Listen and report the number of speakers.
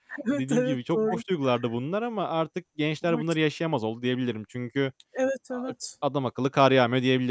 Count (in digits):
2